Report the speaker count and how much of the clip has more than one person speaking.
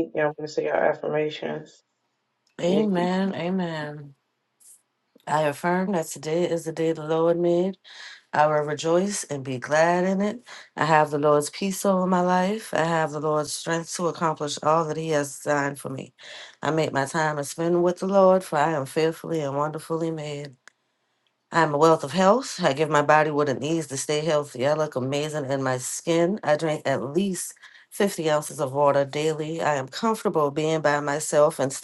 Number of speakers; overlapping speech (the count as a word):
two, about 1%